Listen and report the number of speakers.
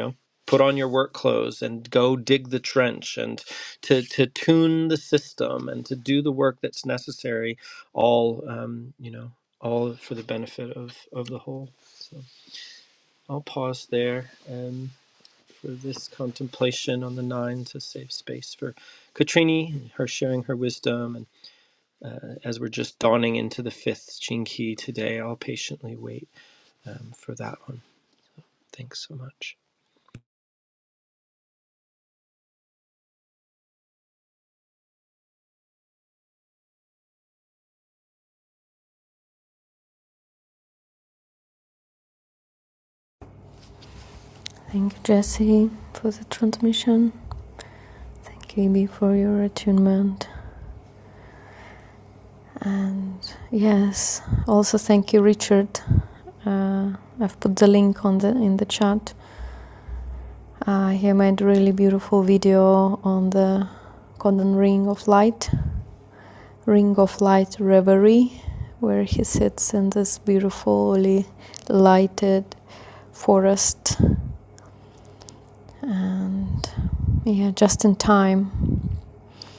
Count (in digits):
2